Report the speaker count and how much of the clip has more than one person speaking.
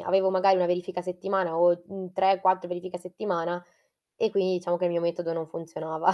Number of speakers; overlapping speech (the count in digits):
1, no overlap